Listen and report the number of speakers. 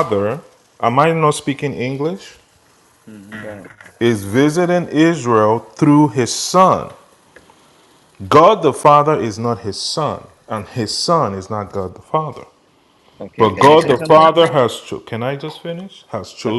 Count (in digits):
2